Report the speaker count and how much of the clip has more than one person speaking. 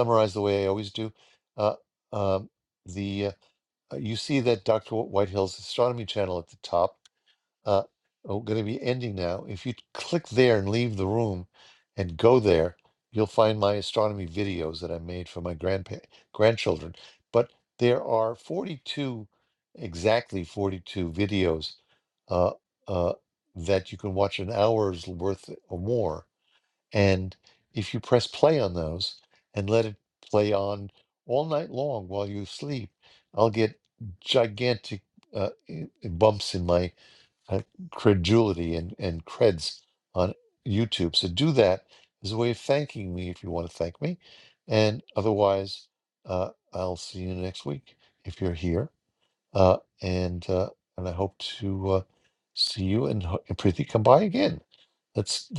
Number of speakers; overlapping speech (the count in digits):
1, no overlap